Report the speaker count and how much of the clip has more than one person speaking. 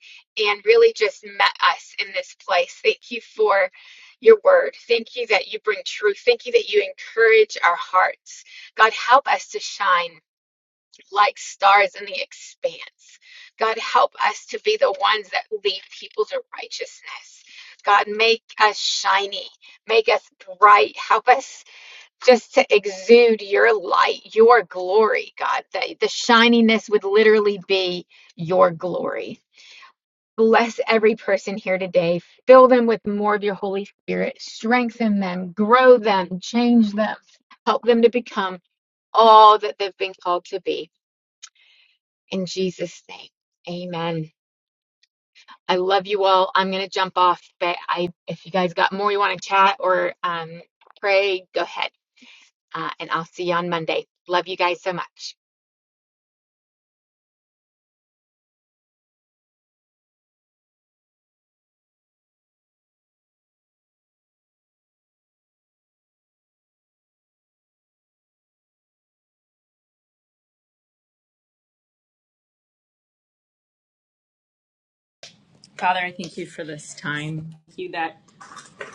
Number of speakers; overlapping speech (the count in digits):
2, no overlap